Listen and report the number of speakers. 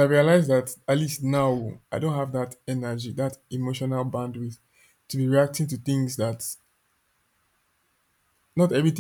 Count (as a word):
one